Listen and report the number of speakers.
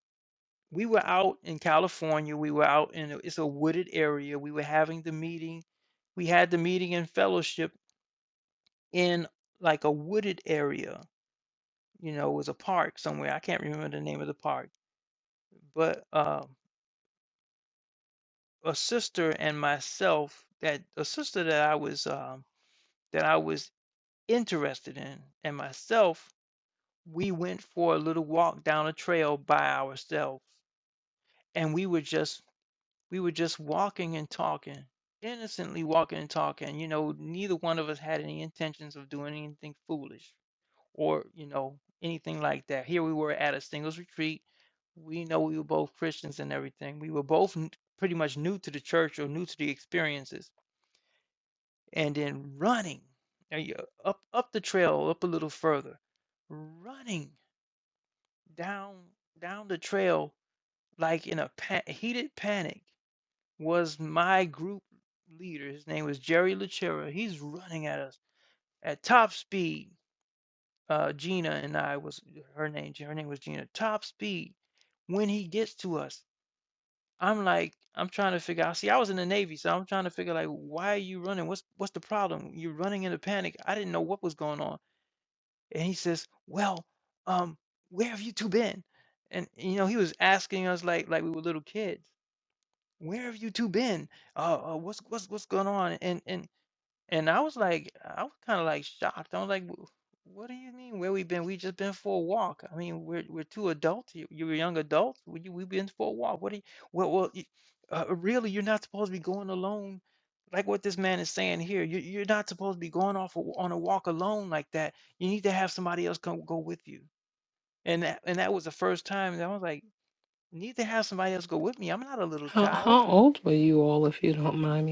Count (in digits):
2